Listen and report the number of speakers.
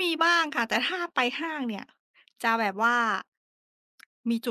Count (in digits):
1